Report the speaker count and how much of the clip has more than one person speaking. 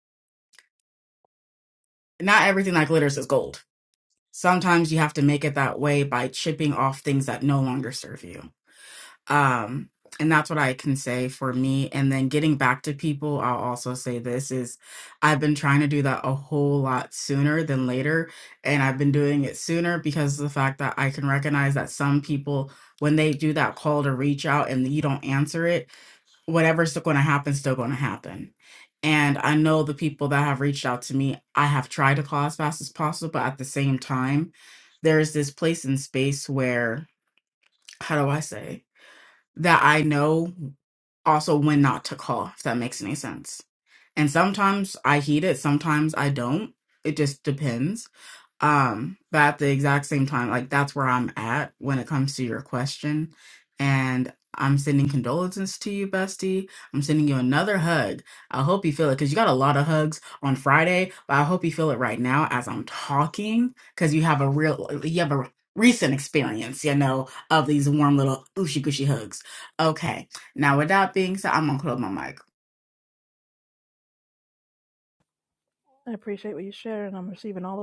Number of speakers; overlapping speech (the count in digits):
2, no overlap